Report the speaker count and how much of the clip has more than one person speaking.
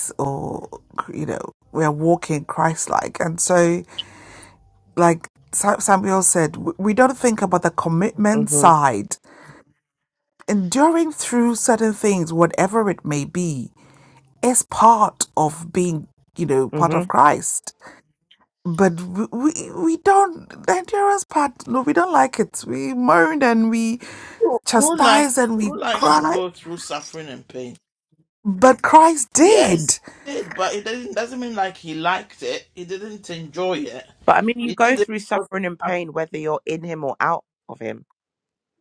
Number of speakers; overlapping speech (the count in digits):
3, about 9%